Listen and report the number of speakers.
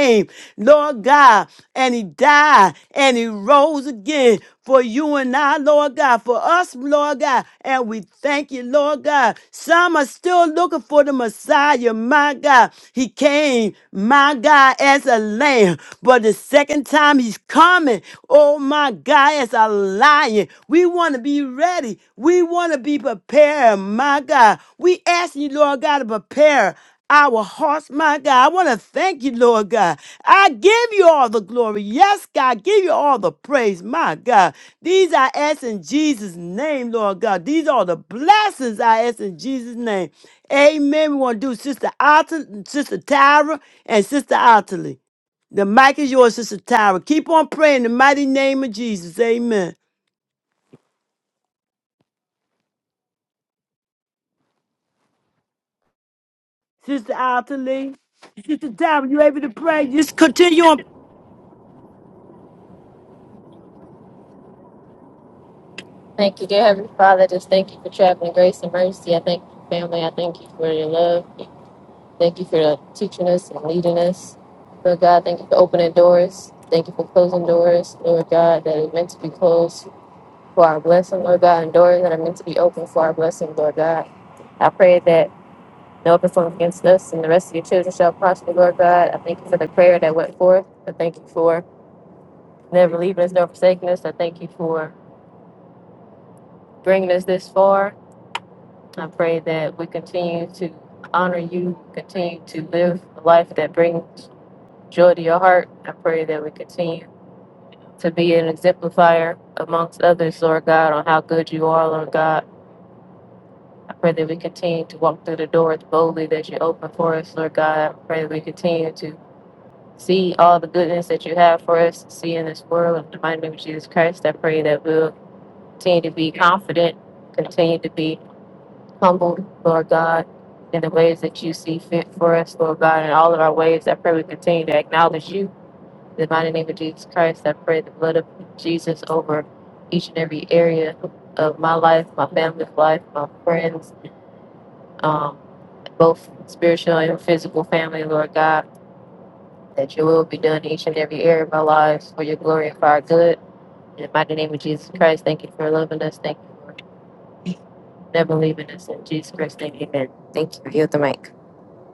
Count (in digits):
2